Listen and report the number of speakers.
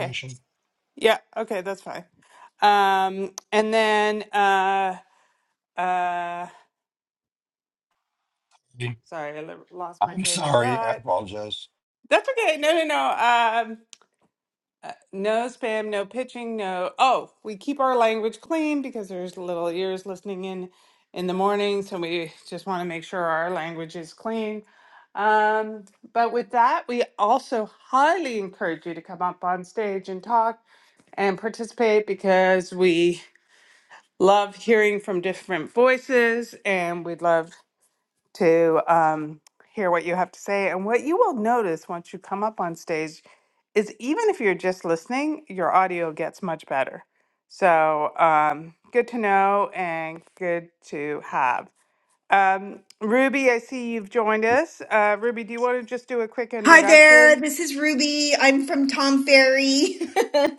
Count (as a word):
three